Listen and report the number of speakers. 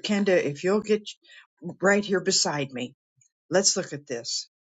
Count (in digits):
1